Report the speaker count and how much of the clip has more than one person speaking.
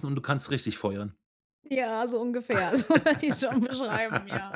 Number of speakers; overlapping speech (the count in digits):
2, no overlap